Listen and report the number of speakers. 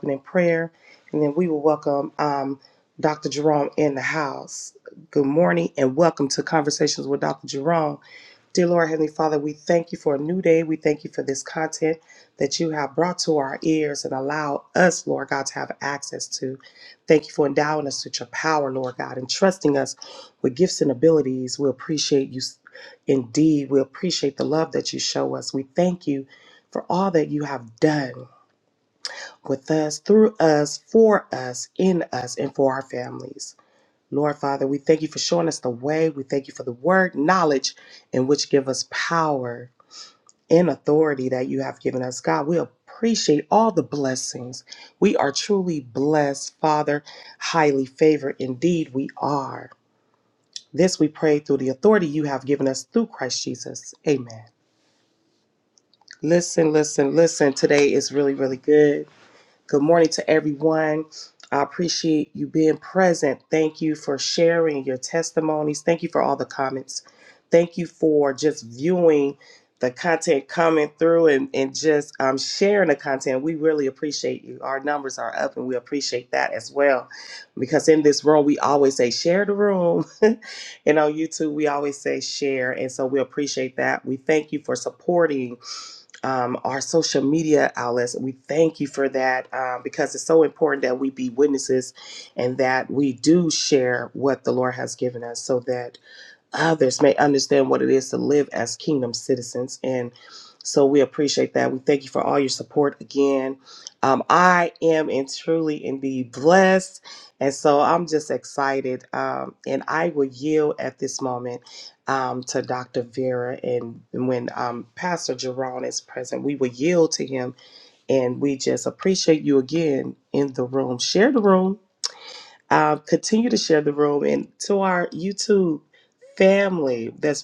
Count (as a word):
one